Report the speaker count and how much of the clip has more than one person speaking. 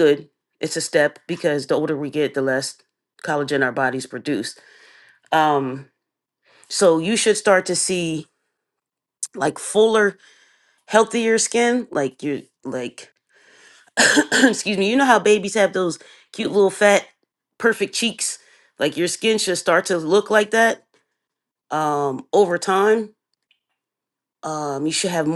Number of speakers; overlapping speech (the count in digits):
1, no overlap